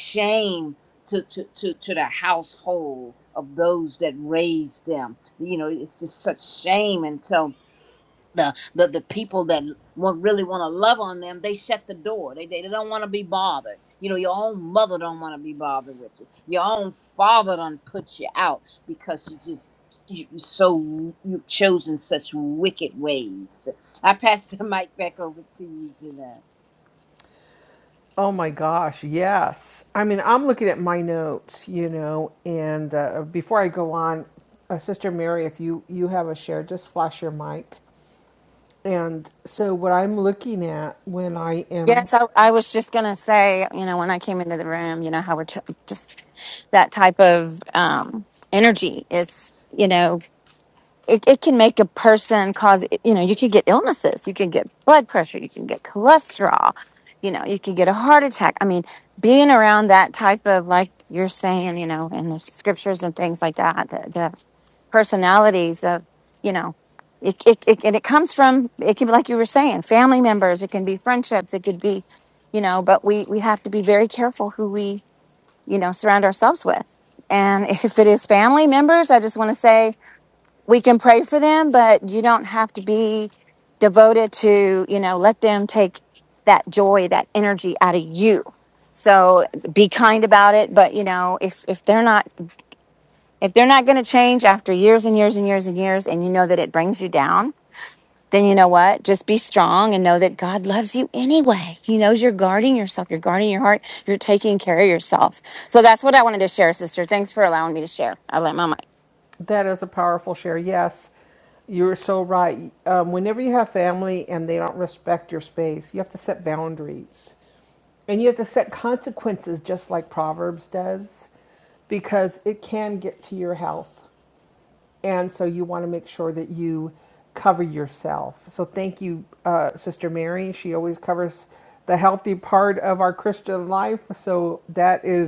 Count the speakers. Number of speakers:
three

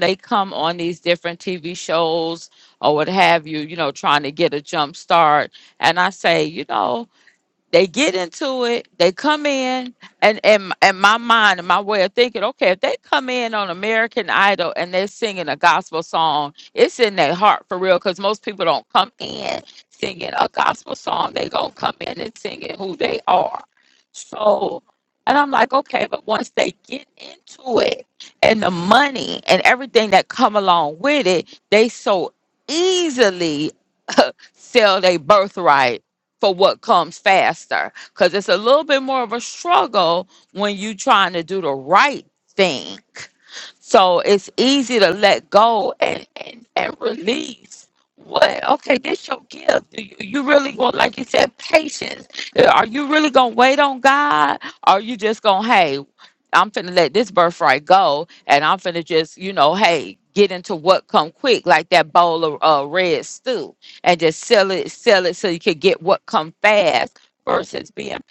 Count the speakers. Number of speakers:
one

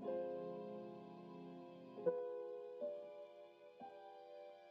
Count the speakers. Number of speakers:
zero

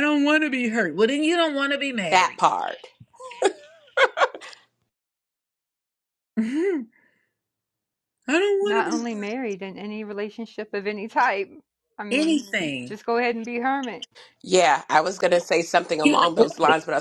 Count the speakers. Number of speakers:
three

